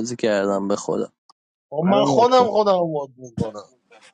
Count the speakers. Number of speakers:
2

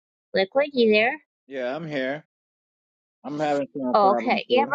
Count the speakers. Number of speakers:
2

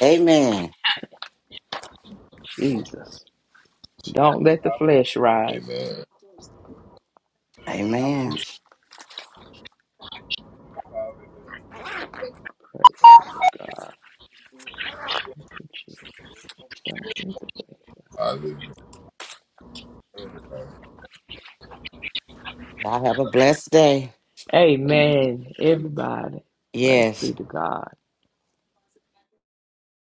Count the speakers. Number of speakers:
4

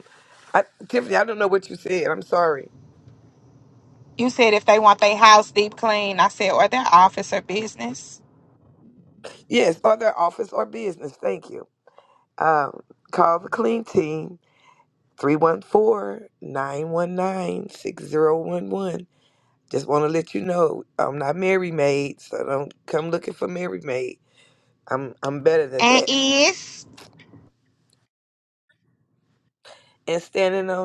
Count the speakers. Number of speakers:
2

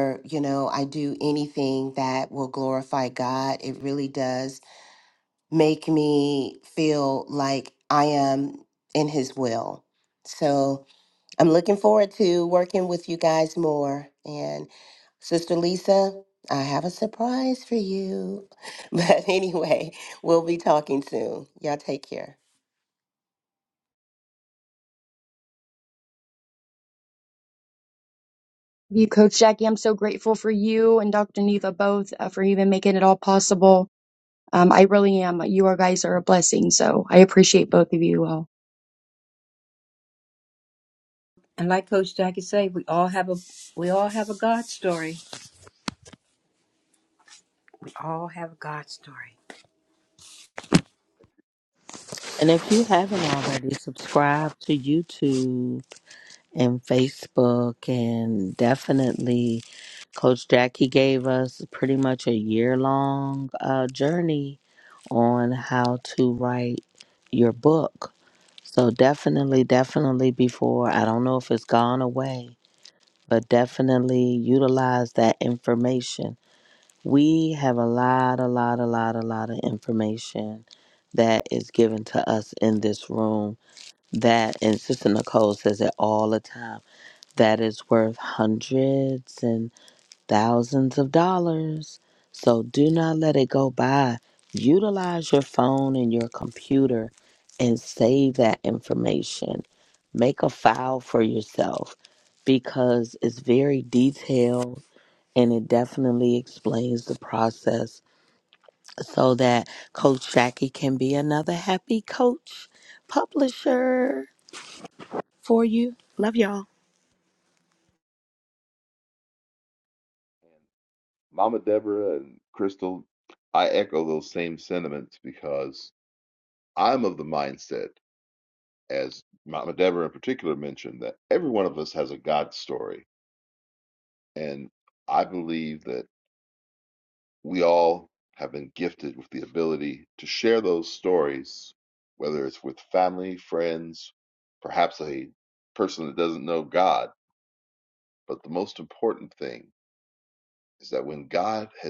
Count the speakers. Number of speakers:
5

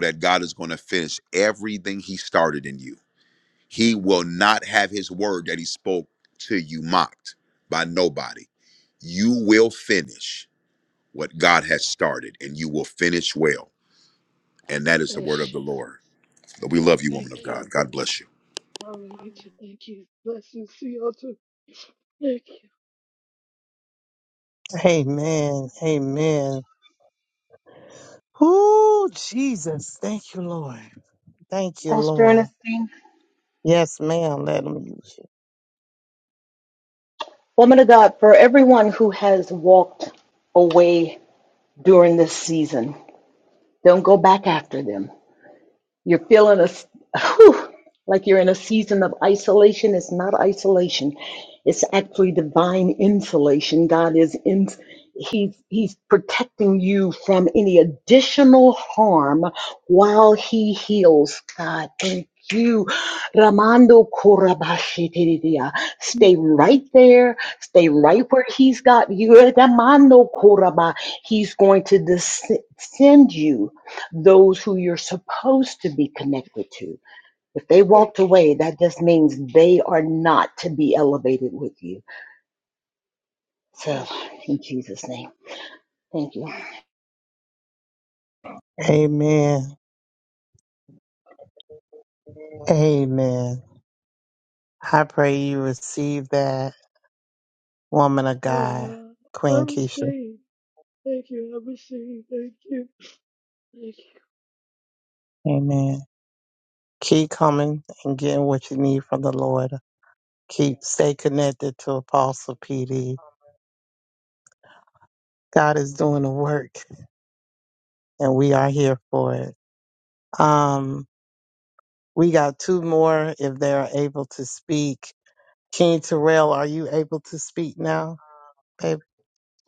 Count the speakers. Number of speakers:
4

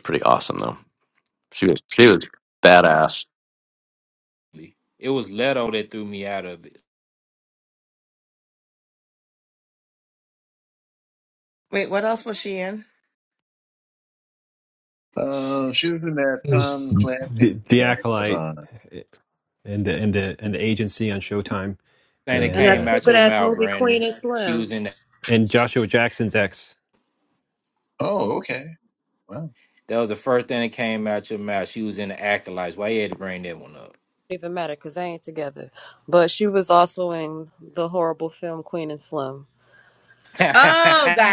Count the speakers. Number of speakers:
6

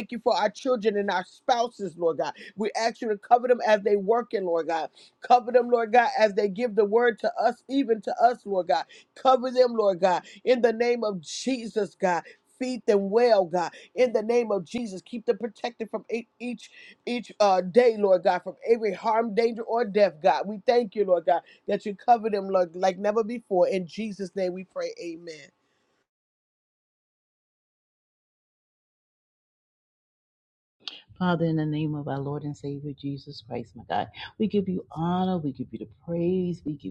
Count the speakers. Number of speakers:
2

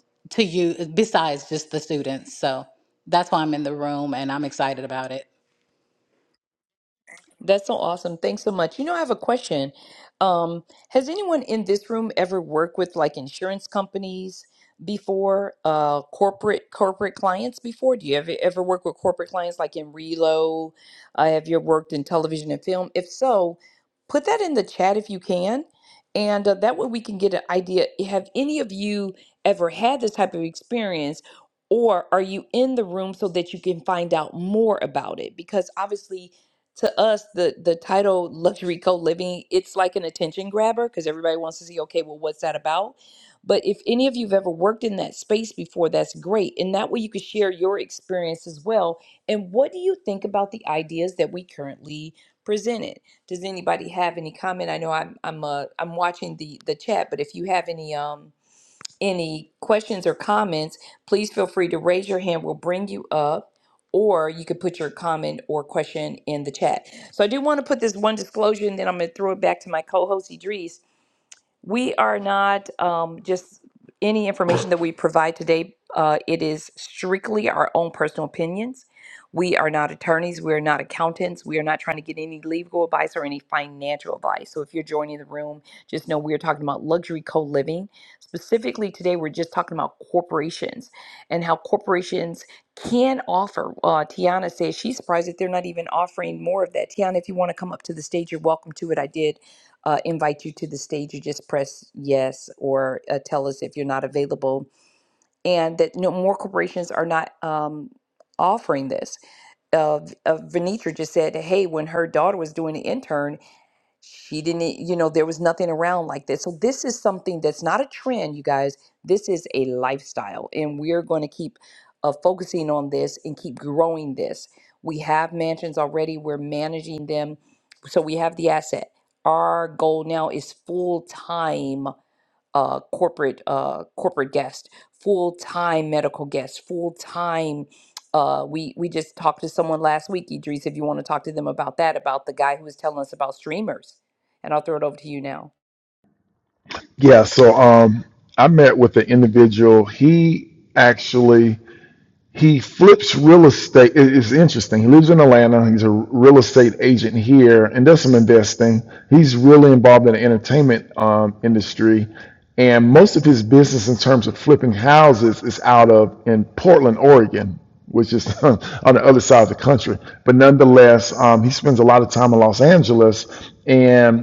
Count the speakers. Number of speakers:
3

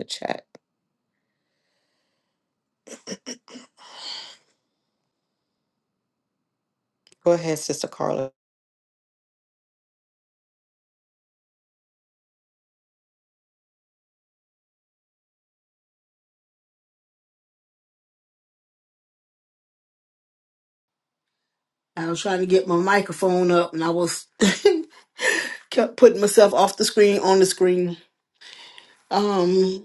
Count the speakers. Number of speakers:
2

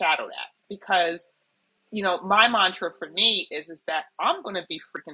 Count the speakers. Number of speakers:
1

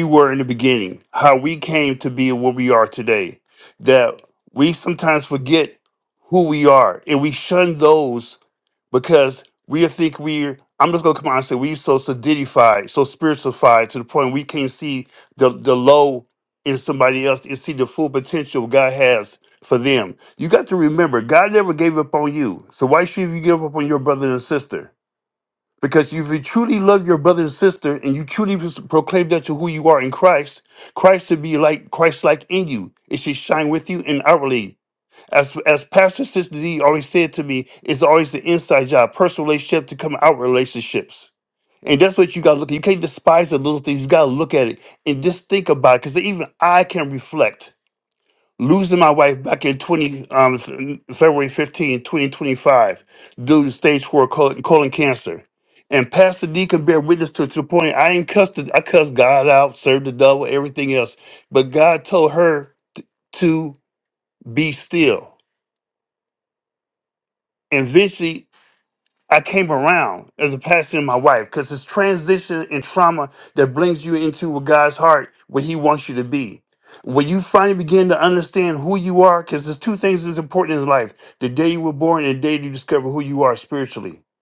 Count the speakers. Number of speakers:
1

